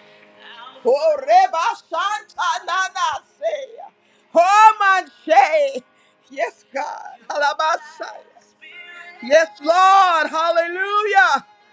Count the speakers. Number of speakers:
1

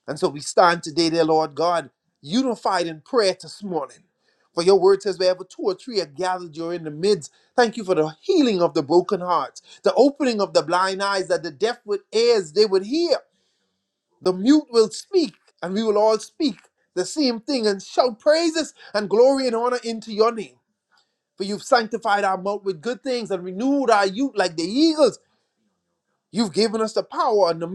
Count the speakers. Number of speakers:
1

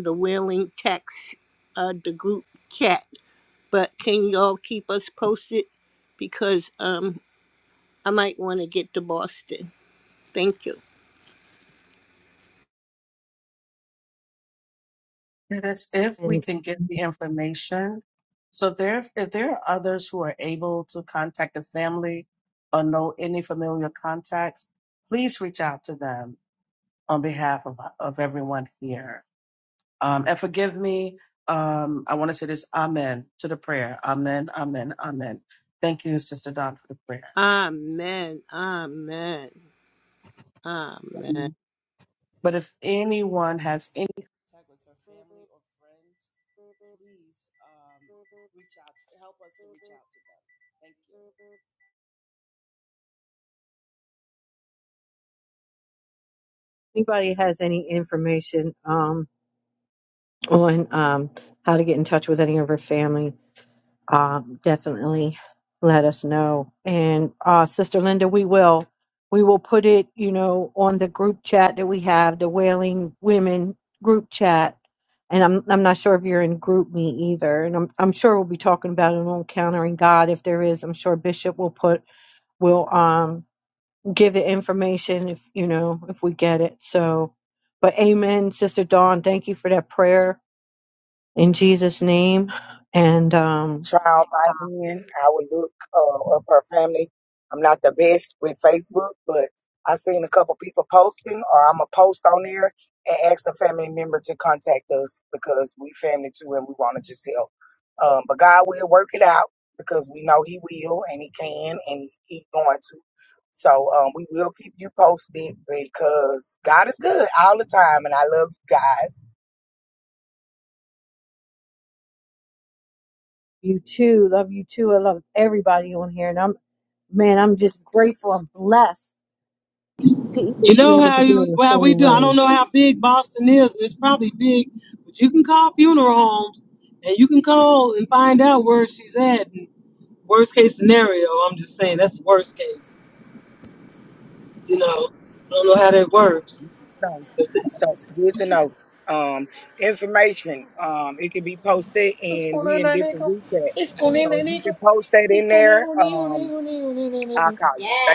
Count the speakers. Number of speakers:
6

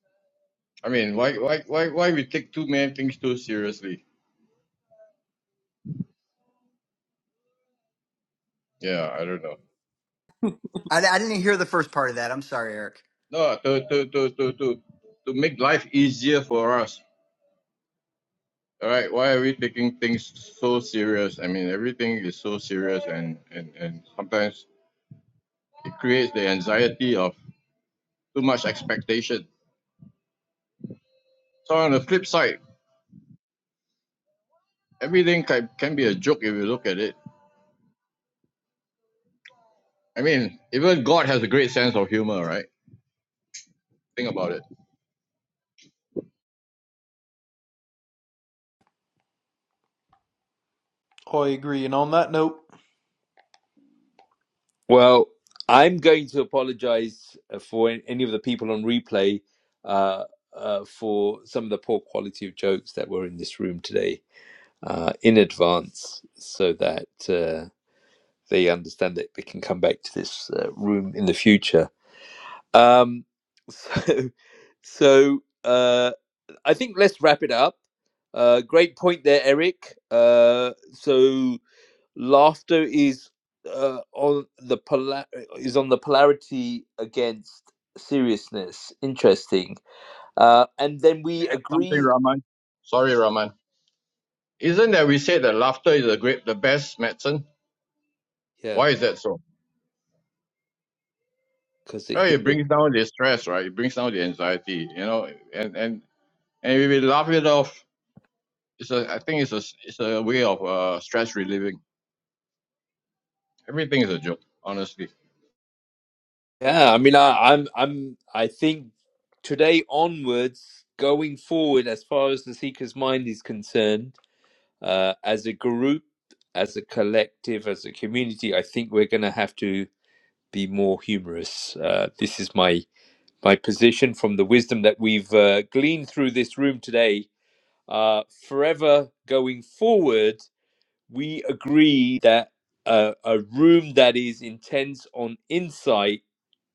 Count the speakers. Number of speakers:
4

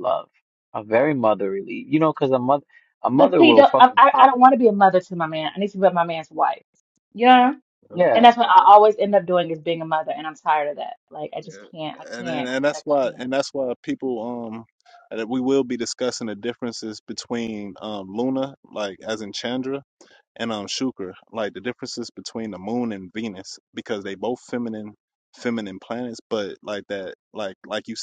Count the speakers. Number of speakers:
3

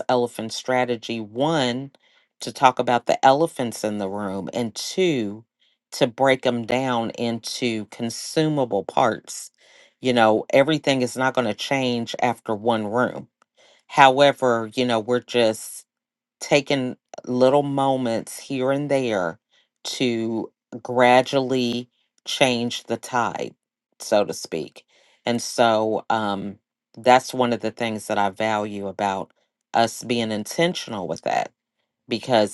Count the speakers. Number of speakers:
1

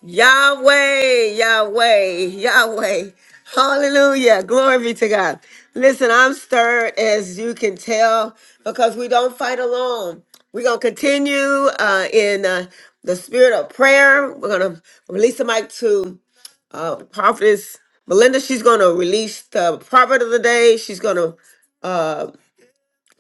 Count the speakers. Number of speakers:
1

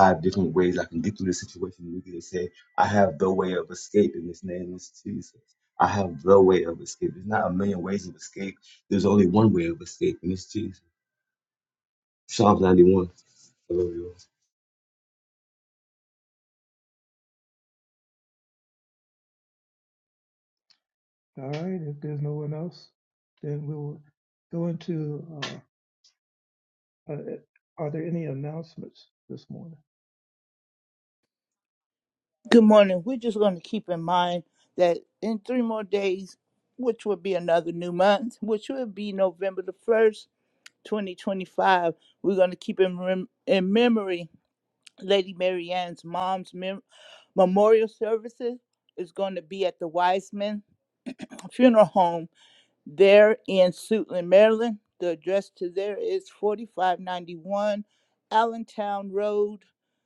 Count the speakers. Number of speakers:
3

